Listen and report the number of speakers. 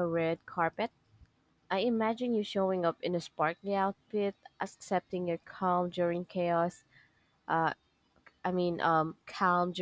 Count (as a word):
one